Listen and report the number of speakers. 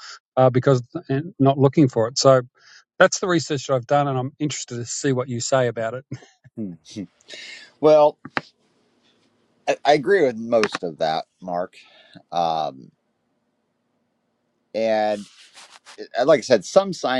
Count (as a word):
two